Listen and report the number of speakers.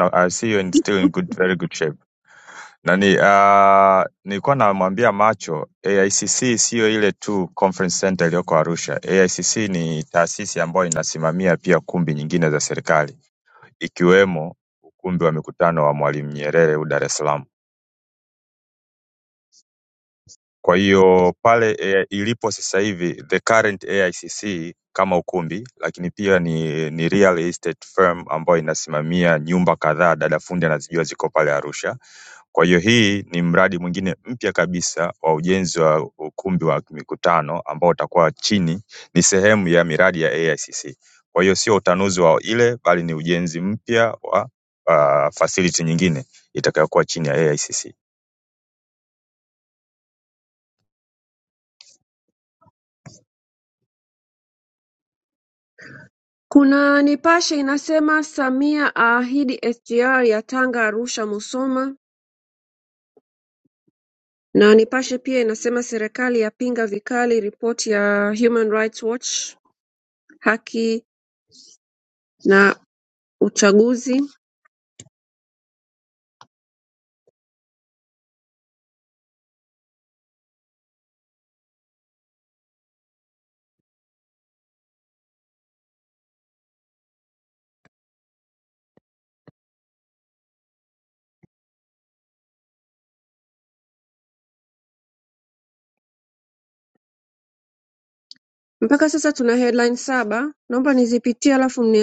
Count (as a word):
two